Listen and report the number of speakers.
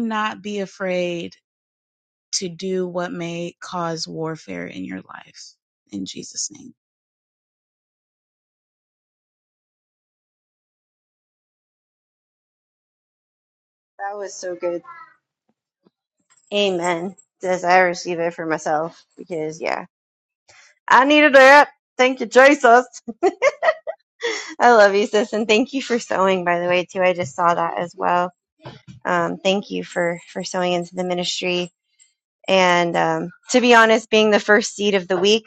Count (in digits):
2